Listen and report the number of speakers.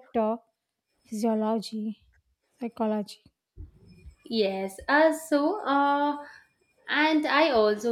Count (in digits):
2